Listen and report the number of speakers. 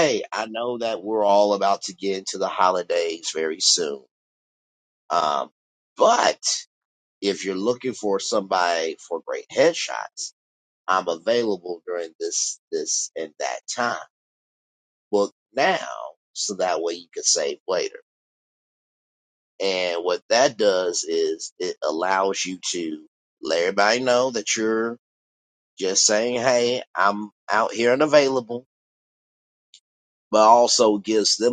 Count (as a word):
one